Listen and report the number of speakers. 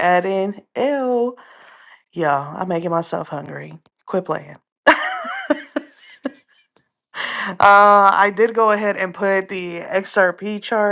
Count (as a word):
one